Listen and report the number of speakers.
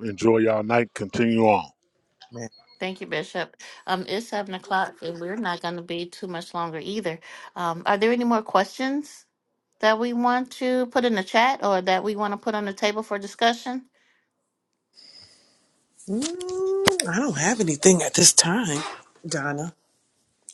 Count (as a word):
three